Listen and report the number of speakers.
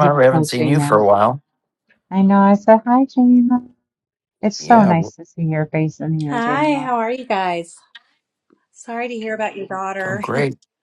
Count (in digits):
3